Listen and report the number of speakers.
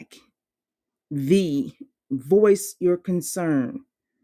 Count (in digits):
1